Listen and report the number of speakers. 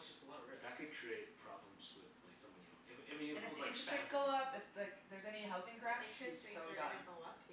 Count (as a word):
four